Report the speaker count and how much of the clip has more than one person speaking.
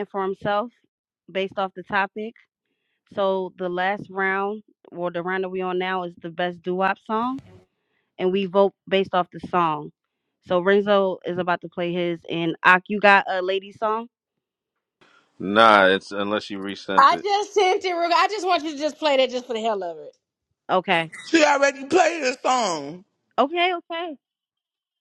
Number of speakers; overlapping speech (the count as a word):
four, about 1%